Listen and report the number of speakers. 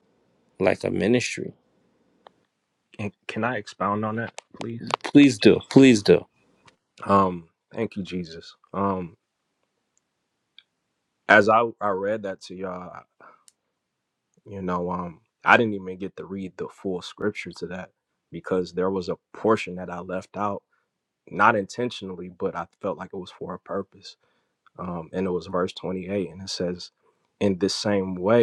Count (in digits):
2